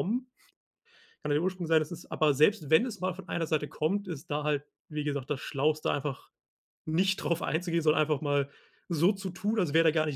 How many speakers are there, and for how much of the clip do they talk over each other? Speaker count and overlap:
1, no overlap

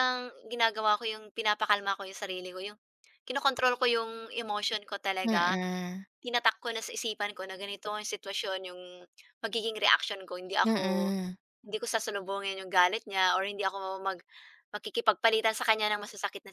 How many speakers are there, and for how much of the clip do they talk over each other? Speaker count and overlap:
2, about 5%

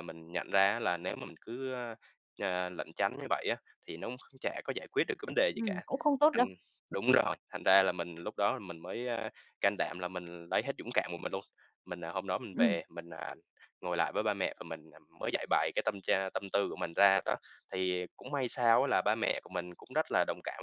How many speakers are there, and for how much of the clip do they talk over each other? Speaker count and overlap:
2, about 3%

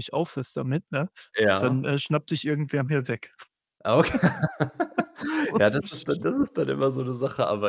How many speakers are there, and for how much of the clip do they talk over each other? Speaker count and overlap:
2, about 11%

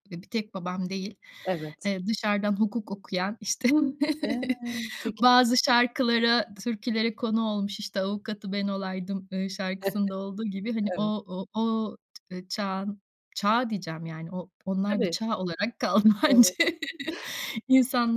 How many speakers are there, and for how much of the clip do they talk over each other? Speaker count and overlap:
2, about 5%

